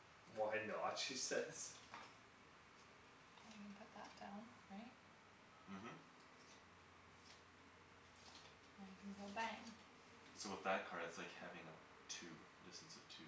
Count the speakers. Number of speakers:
three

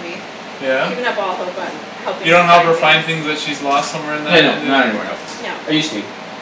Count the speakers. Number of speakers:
three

